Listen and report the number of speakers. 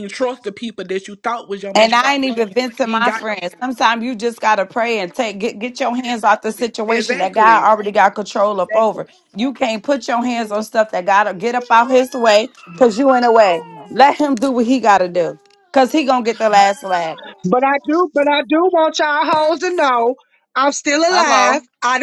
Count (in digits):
3